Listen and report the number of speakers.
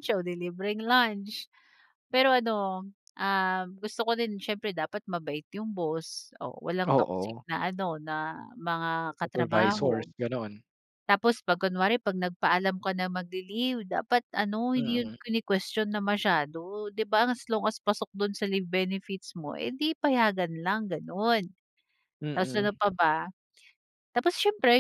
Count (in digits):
2